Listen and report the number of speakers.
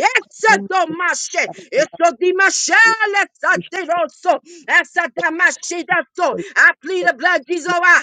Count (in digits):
1